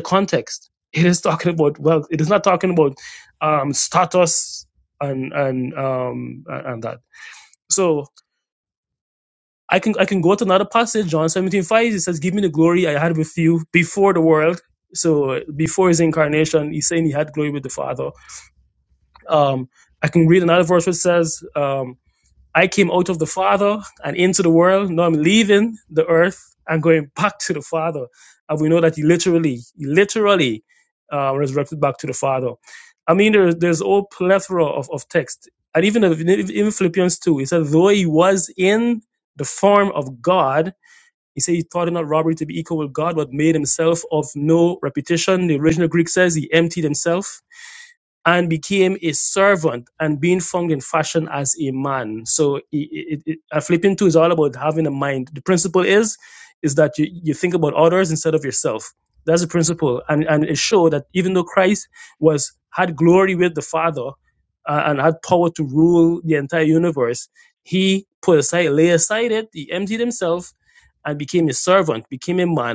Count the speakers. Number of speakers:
1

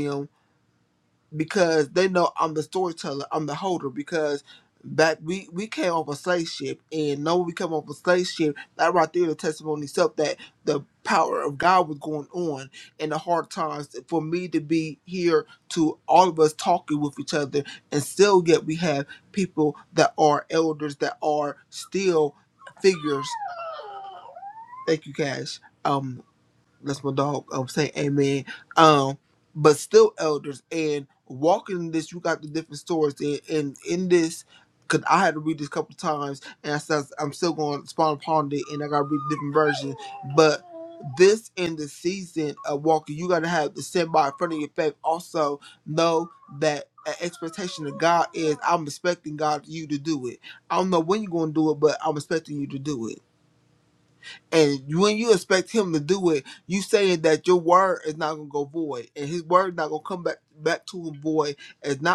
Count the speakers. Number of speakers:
1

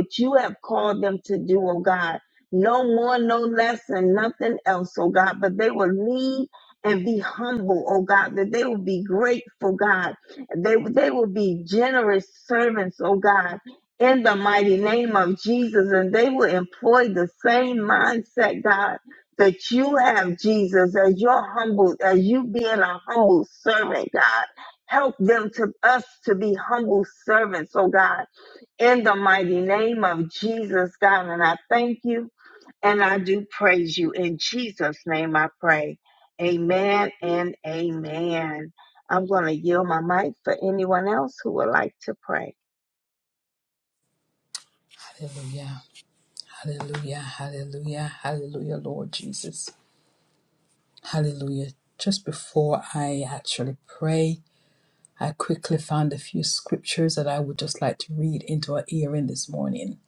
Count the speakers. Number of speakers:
2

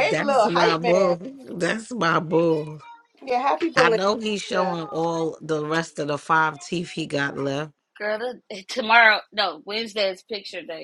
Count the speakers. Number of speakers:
3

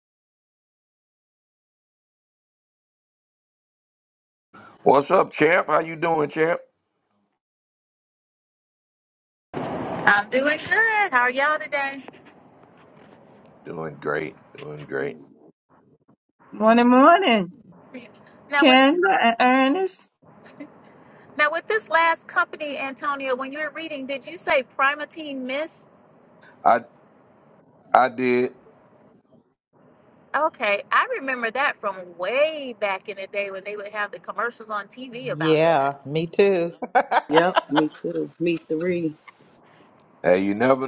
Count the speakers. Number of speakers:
5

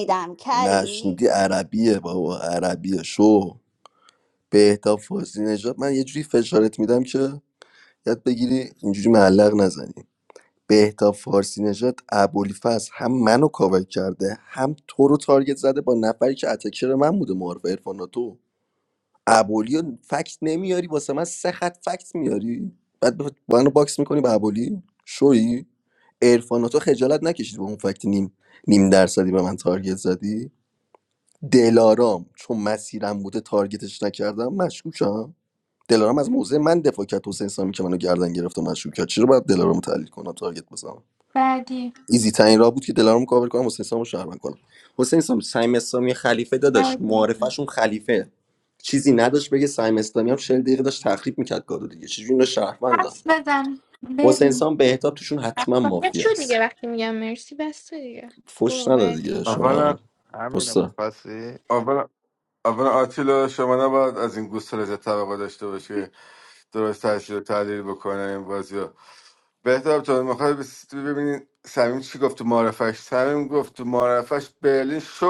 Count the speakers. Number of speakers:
5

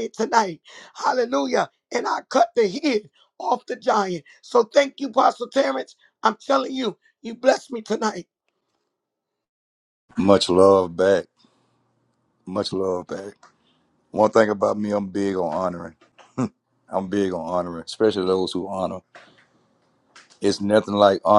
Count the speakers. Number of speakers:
2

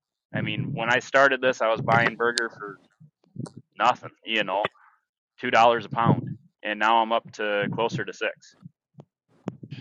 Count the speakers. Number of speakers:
1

